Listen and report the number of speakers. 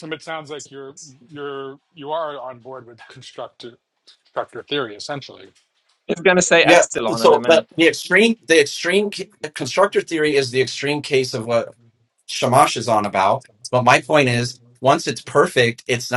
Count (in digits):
3